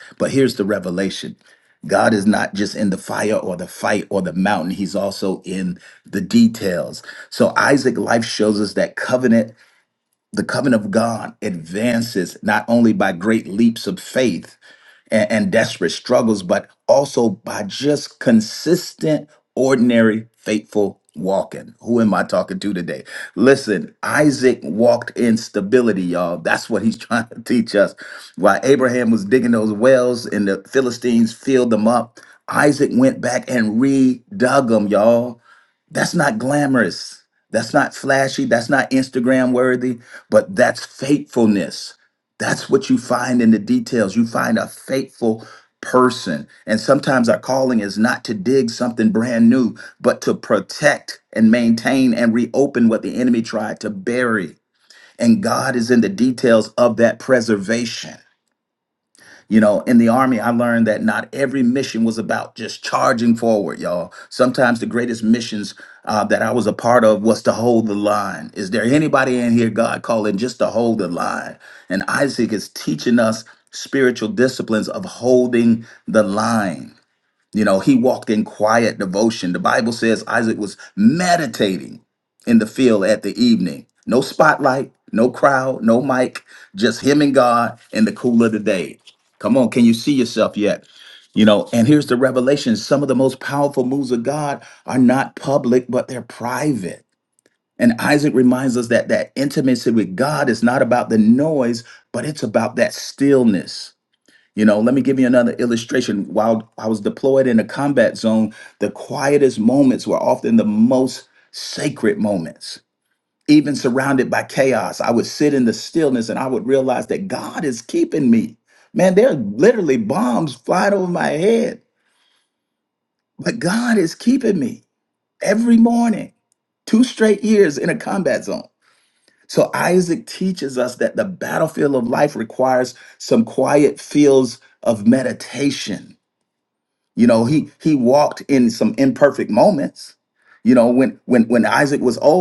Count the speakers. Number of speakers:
one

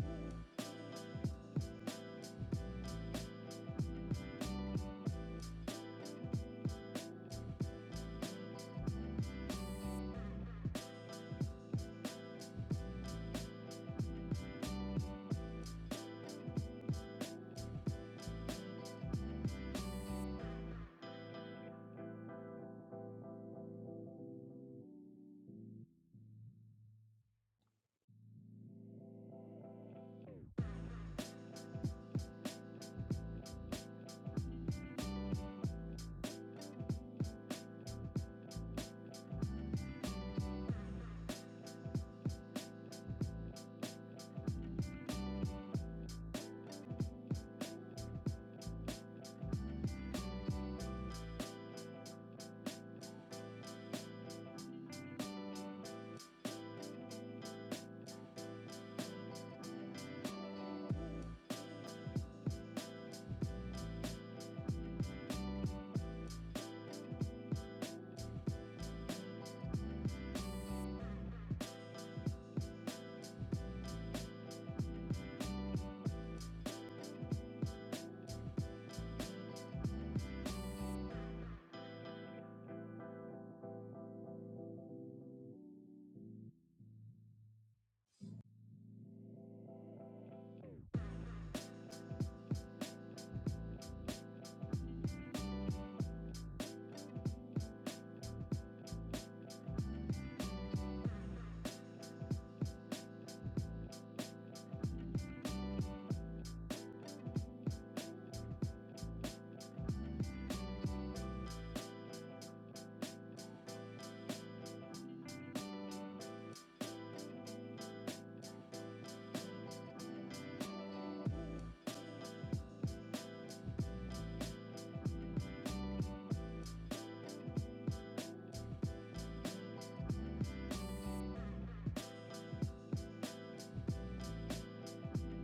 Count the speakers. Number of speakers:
zero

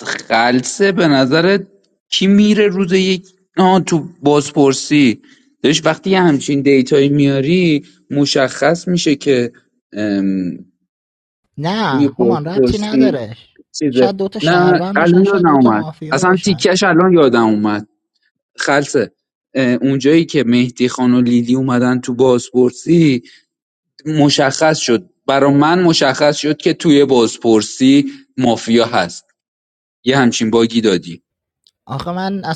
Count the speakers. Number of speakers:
two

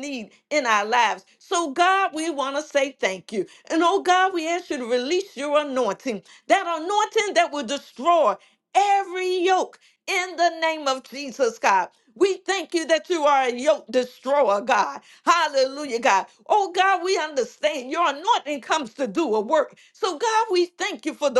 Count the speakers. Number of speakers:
one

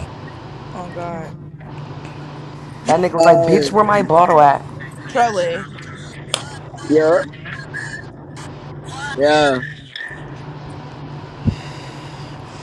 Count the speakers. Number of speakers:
three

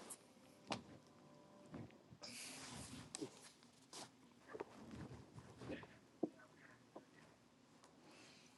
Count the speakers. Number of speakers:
zero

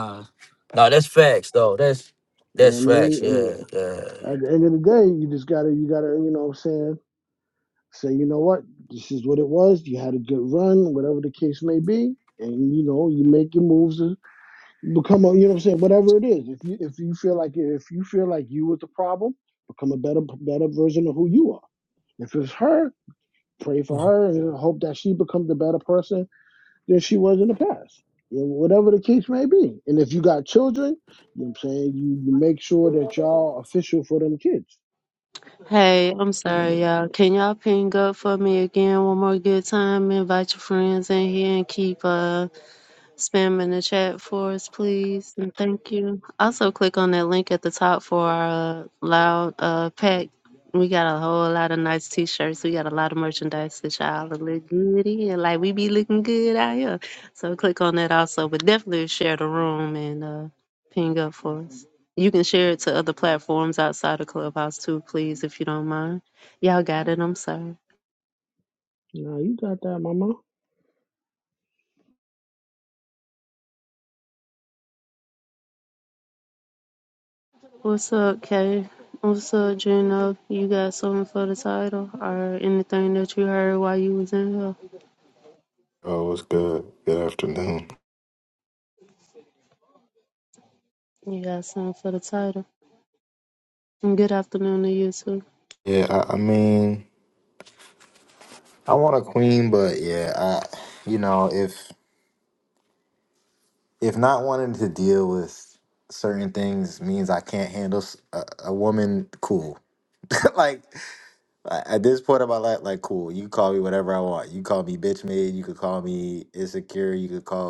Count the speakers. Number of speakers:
four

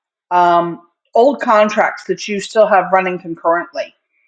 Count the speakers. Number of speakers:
one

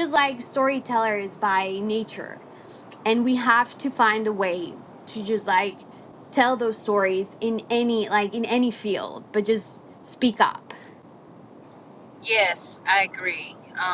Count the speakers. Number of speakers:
two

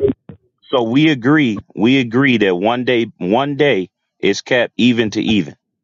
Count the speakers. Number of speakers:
one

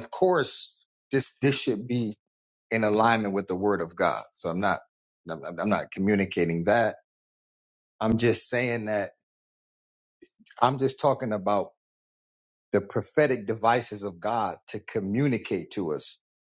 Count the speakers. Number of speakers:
one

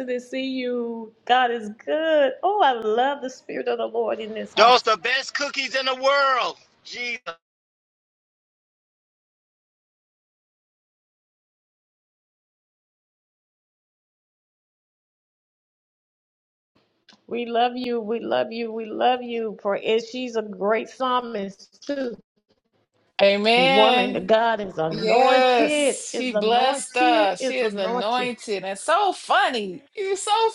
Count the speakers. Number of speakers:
three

